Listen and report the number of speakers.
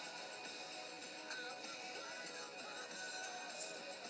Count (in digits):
0